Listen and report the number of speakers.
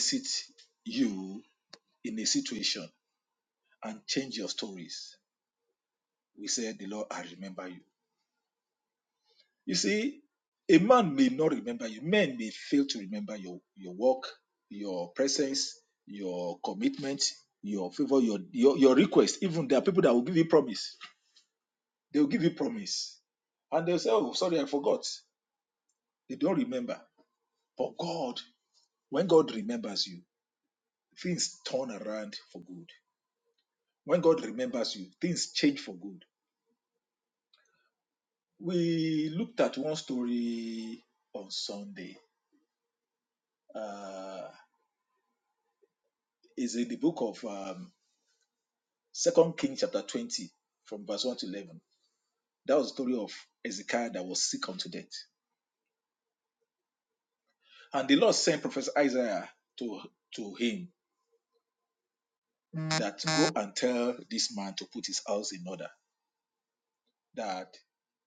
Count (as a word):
one